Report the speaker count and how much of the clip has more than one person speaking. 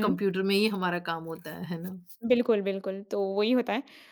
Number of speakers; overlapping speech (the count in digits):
2, about 5%